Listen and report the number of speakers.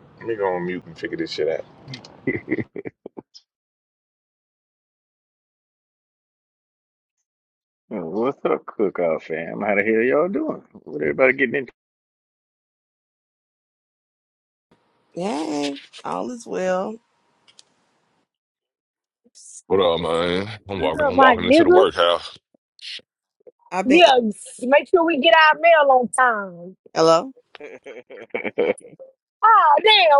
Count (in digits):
5